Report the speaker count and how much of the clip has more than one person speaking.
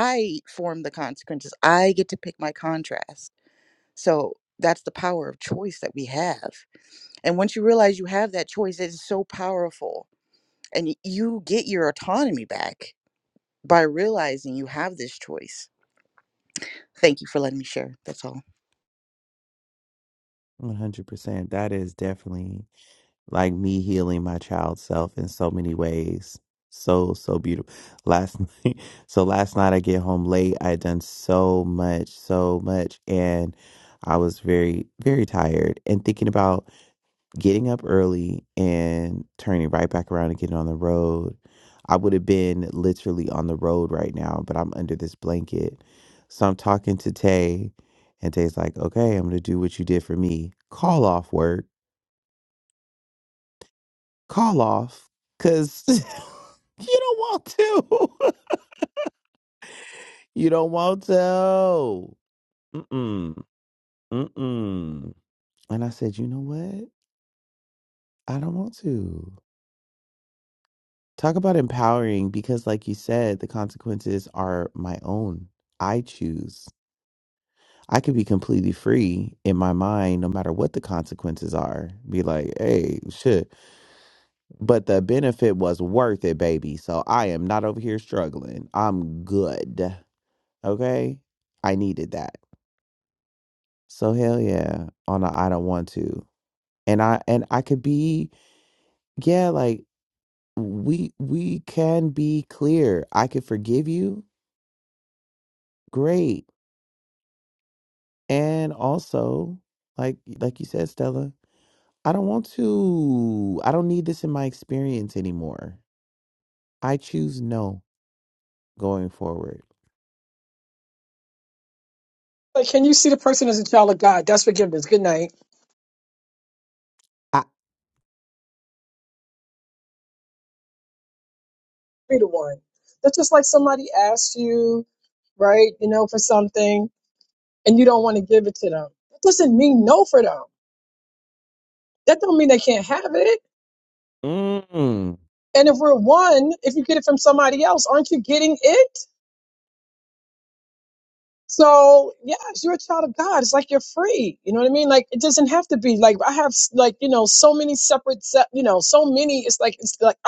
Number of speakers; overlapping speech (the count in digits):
3, no overlap